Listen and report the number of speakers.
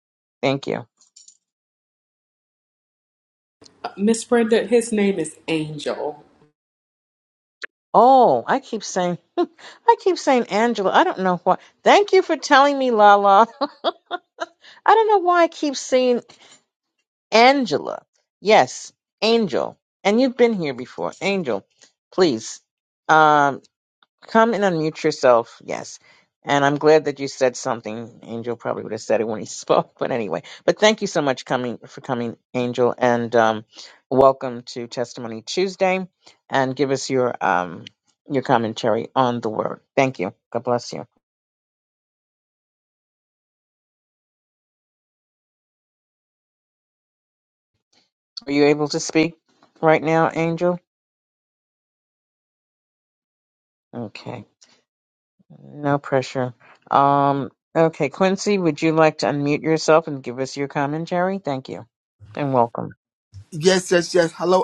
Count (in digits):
3